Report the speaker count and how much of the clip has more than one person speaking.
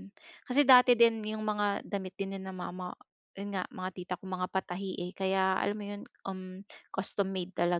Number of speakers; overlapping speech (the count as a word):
one, no overlap